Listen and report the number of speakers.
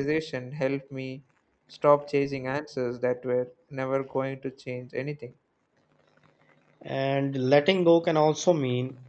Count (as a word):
two